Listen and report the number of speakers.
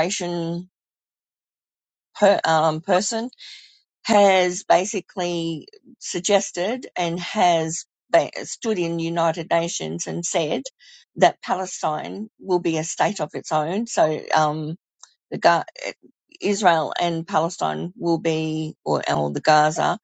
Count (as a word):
one